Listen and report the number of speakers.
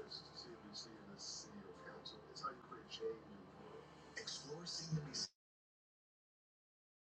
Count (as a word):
zero